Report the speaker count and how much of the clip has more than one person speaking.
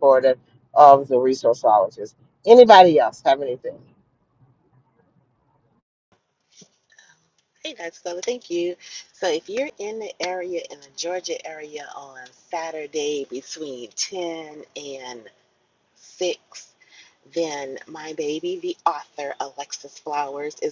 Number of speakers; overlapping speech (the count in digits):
2, no overlap